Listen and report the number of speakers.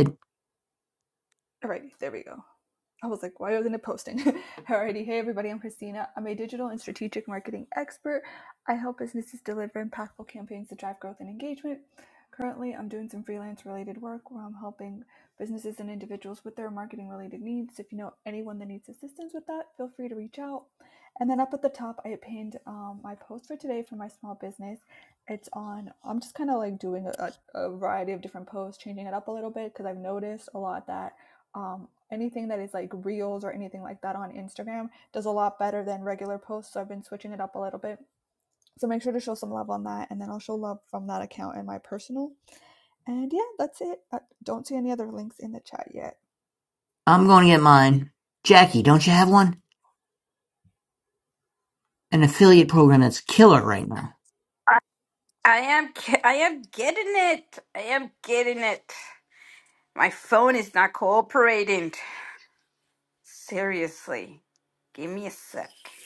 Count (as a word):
three